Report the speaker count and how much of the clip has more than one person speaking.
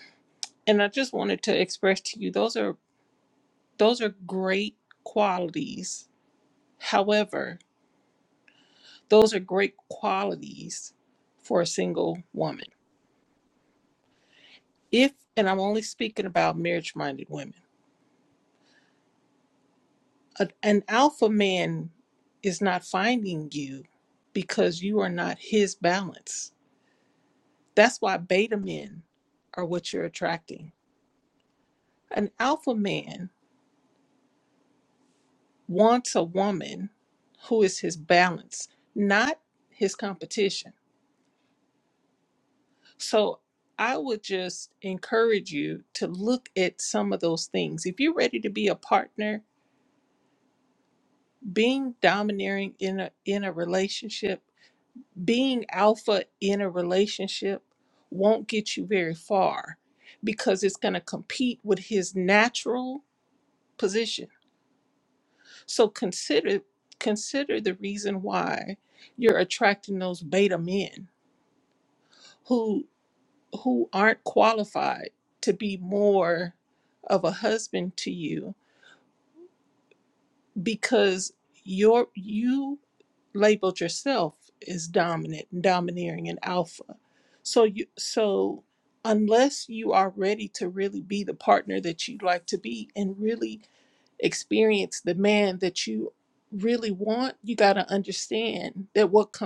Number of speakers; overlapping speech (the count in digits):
1, no overlap